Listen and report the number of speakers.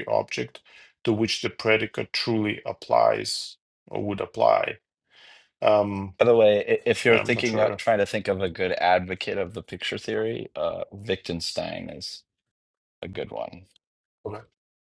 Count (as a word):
two